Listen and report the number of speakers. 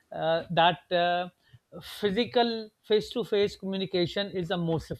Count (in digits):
1